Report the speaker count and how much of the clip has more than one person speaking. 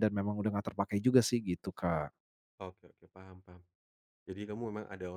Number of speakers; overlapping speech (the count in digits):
2, no overlap